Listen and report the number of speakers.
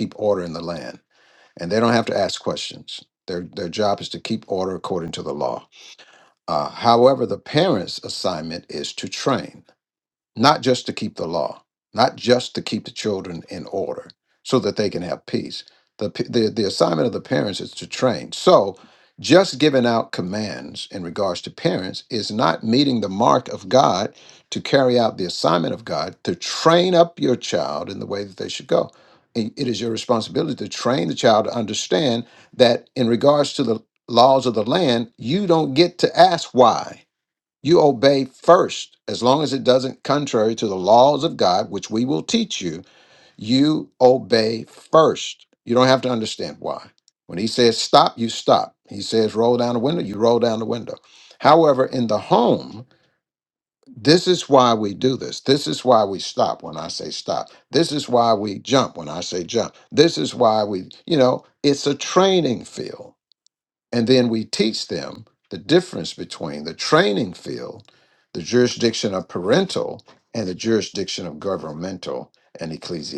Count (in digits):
1